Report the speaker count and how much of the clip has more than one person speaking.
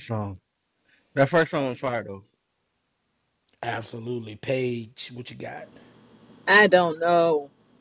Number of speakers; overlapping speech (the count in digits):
3, no overlap